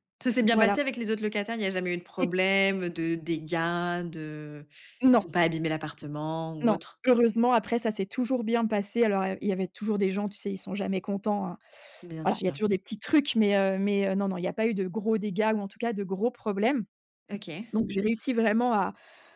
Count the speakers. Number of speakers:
two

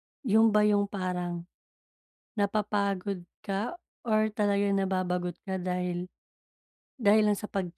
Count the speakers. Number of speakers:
one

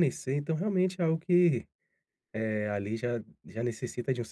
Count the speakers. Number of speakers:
one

